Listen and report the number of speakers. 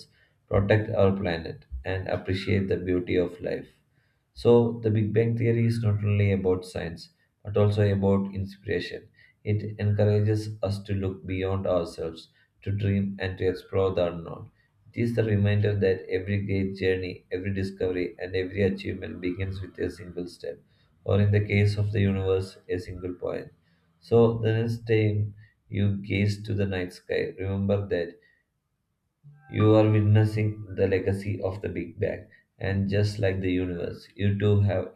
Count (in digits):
1